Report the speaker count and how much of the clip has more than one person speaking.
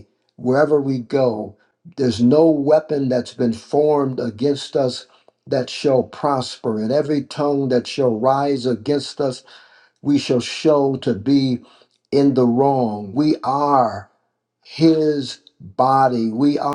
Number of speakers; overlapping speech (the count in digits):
1, no overlap